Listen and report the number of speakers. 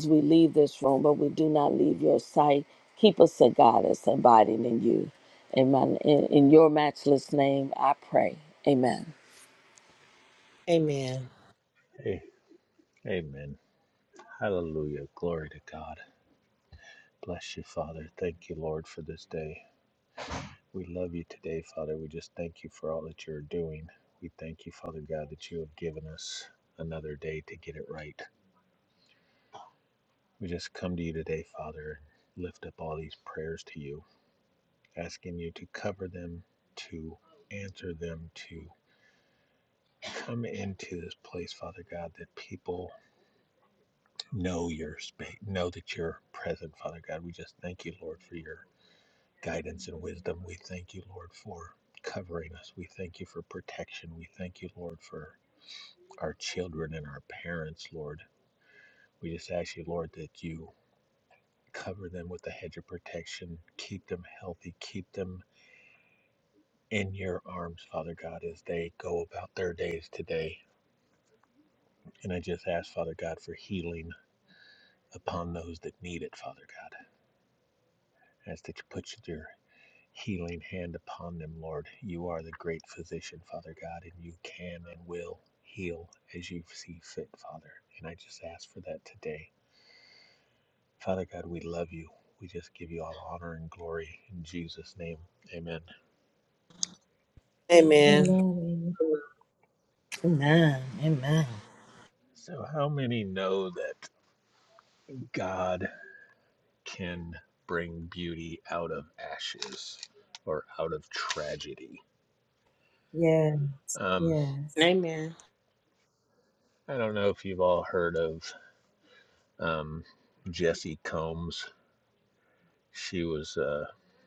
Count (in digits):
4